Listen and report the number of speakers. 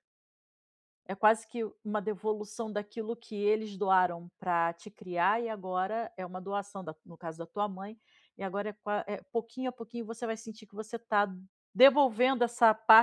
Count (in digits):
1